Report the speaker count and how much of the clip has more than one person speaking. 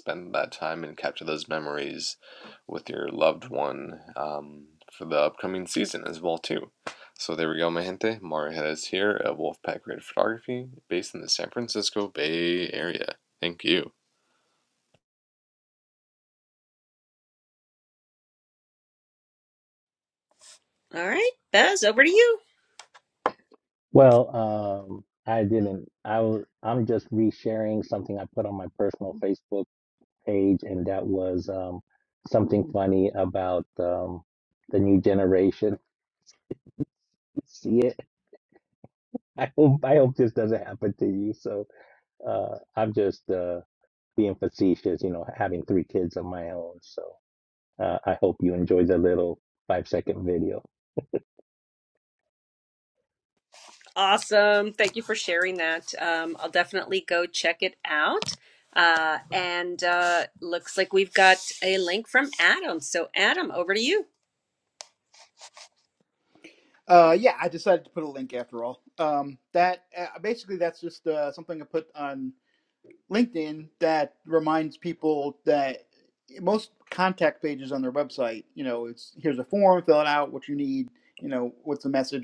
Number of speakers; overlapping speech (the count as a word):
four, no overlap